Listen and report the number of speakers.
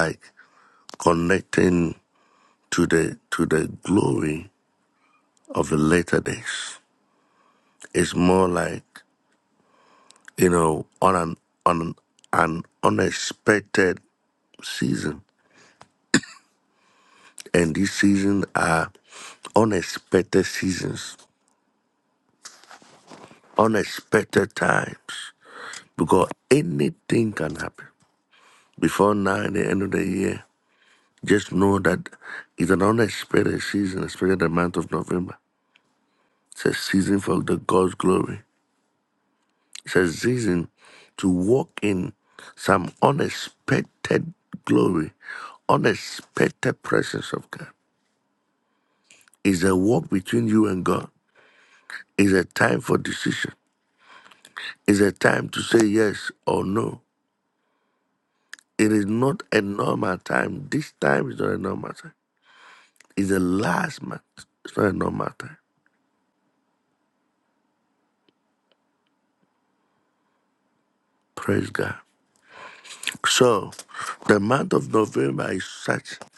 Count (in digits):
1